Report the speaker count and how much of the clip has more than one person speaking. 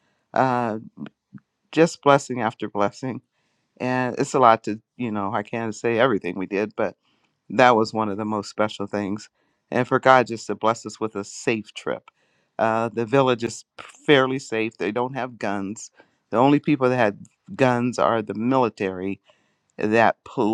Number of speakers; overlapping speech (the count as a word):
one, no overlap